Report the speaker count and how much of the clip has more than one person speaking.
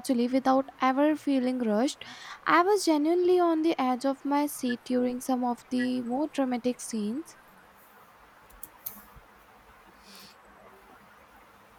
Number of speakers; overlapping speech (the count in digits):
1, no overlap